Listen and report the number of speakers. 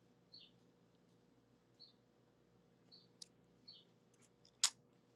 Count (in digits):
0